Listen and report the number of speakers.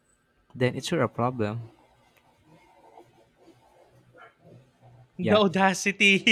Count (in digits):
2